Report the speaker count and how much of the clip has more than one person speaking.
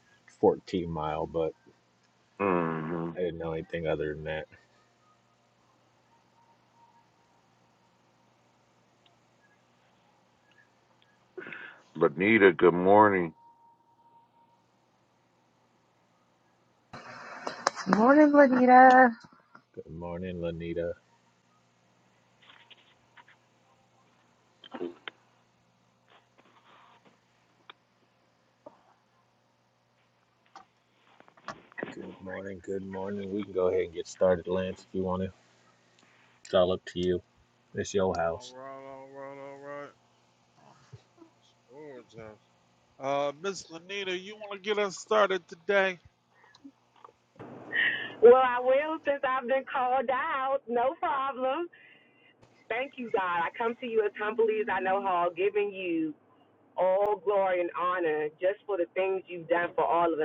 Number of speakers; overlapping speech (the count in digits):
5, under 1%